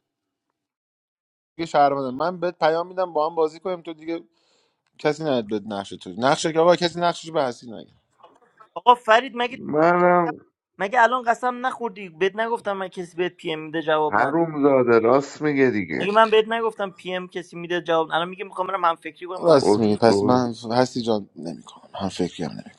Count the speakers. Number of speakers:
3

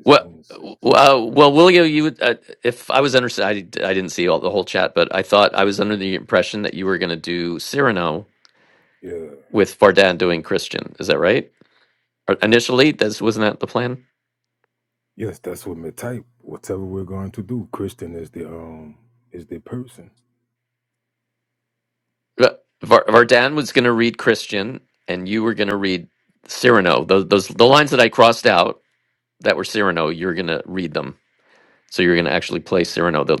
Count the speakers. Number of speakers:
2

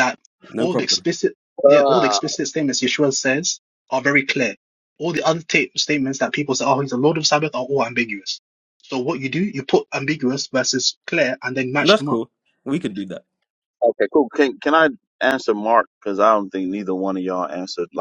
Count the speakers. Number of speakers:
3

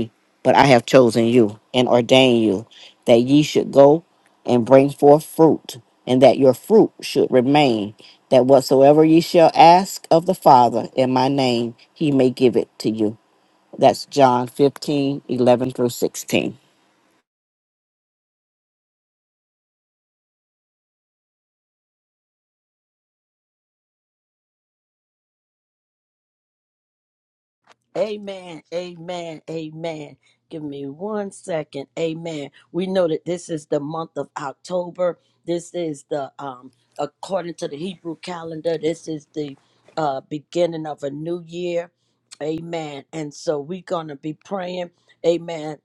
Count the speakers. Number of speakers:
2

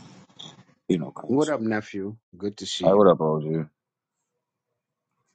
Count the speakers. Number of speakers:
2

